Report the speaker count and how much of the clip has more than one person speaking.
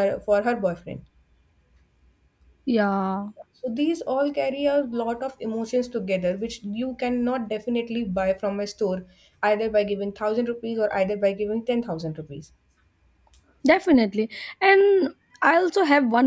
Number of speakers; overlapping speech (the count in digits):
2, no overlap